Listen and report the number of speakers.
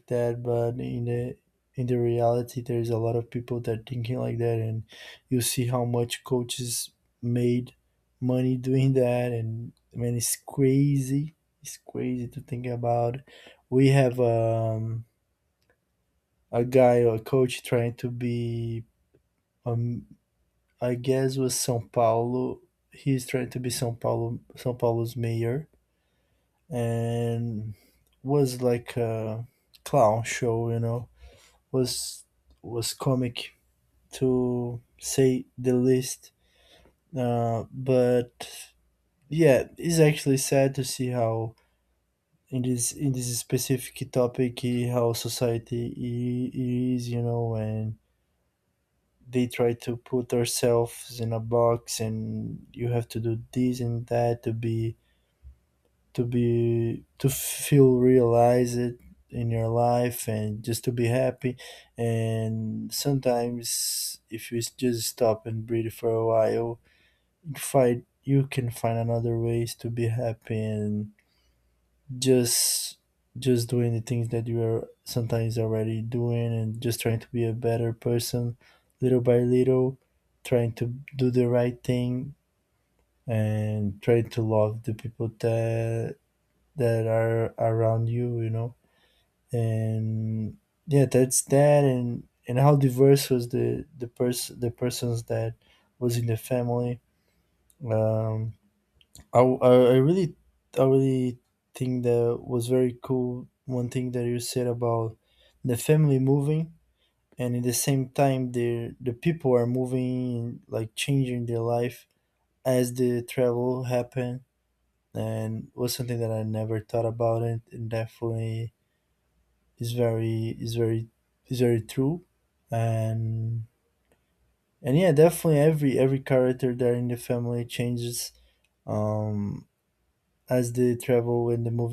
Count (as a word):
one